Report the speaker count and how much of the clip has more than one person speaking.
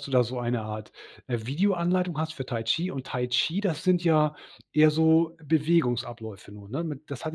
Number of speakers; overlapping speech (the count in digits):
1, no overlap